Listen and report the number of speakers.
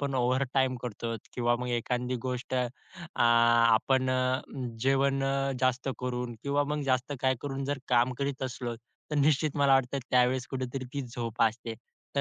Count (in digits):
1